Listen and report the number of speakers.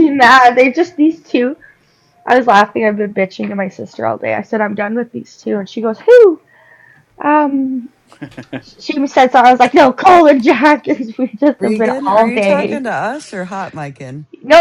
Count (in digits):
2